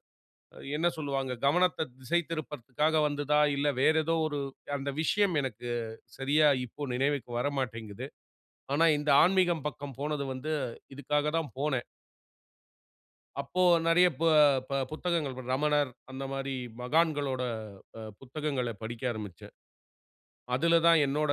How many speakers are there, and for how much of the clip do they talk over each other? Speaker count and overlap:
1, no overlap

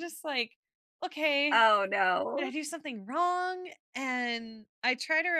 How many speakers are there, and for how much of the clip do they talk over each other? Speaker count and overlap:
2, about 4%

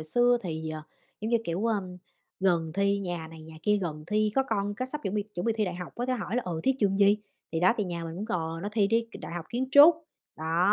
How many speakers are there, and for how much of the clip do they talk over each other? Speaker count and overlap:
1, no overlap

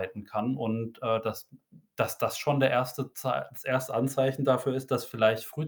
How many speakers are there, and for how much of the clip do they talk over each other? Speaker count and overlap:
1, no overlap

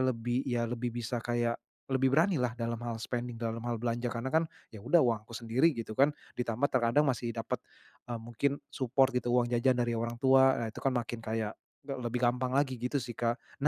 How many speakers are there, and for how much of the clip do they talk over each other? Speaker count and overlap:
1, no overlap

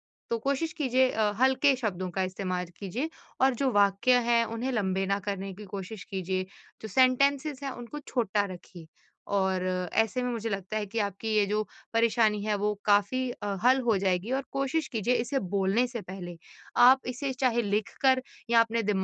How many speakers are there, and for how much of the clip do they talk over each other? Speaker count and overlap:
1, no overlap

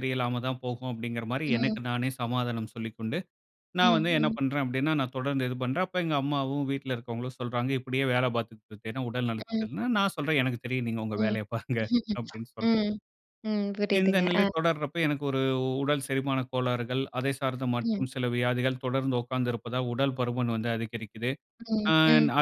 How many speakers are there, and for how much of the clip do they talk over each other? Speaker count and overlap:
2, about 12%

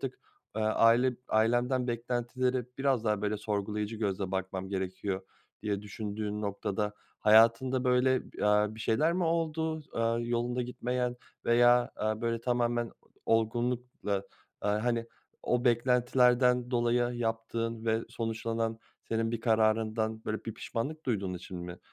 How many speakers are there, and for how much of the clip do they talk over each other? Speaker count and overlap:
1, no overlap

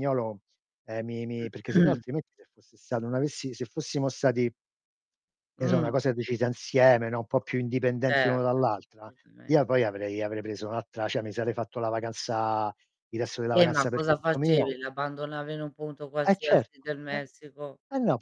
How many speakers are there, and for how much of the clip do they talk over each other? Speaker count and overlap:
2, about 11%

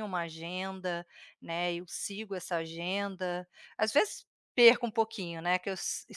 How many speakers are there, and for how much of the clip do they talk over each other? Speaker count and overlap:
1, no overlap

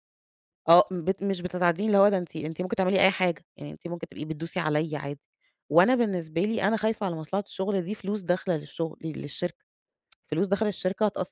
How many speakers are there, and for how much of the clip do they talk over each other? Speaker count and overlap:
1, no overlap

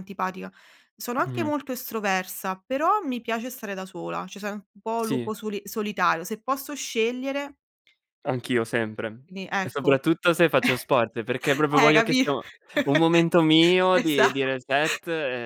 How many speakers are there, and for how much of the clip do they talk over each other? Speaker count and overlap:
2, about 12%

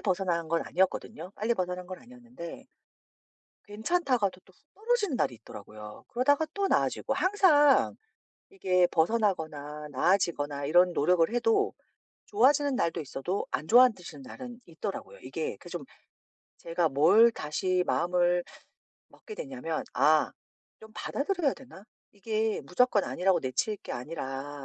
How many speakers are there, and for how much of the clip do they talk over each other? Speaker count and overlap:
1, no overlap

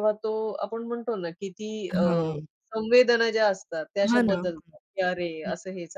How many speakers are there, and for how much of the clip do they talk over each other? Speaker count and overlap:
2, about 11%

